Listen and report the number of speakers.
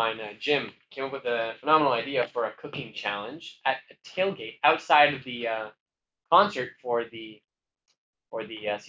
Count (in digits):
1